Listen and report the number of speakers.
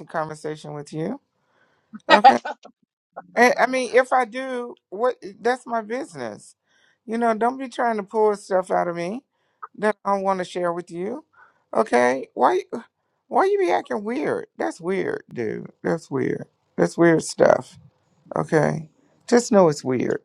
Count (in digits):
1